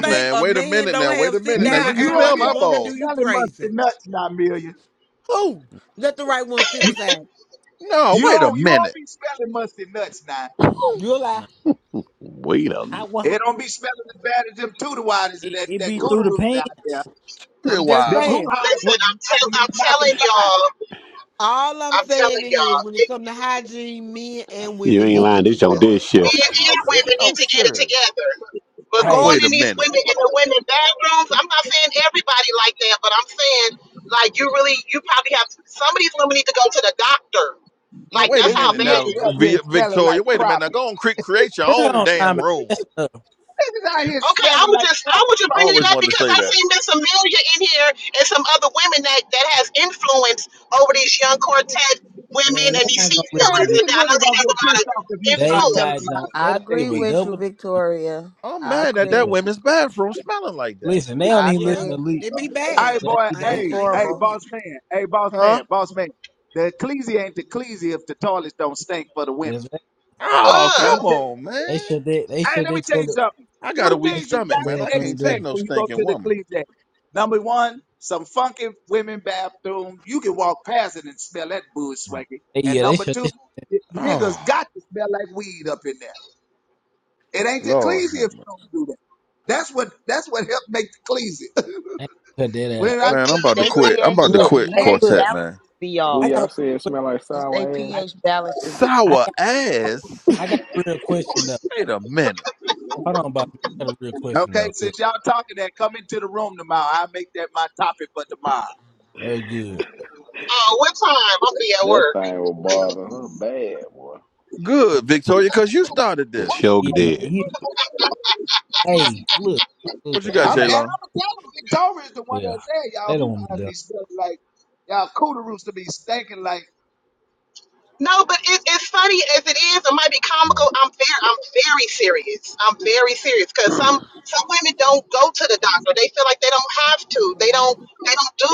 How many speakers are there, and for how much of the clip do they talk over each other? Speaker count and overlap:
eight, about 30%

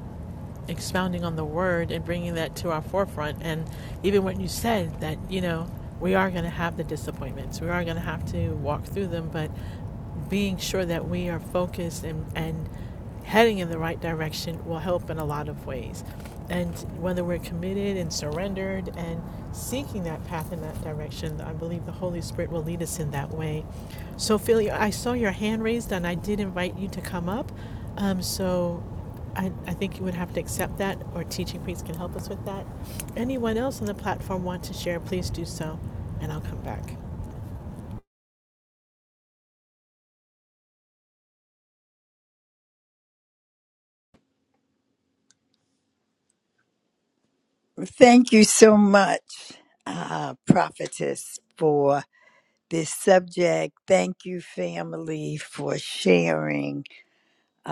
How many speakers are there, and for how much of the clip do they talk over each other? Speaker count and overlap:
two, no overlap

